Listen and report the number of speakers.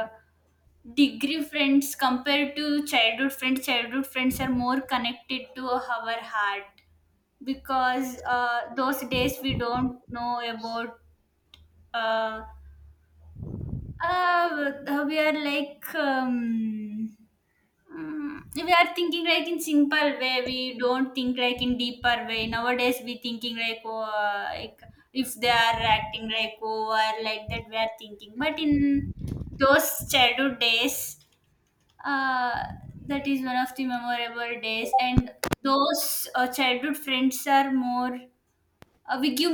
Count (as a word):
one